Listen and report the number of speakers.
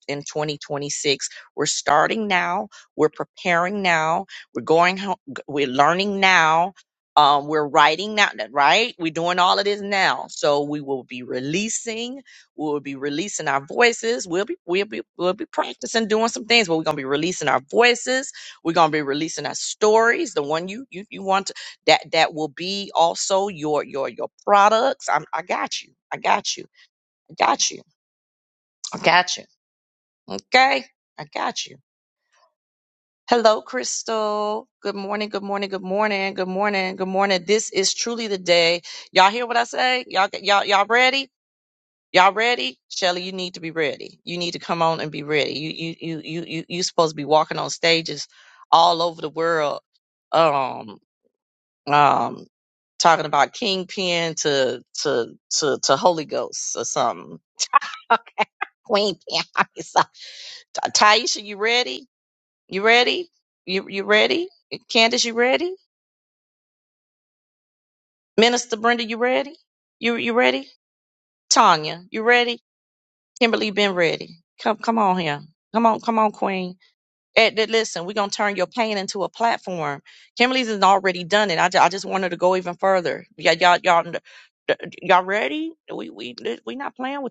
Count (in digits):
1